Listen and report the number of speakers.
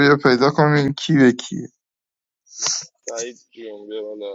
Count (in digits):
2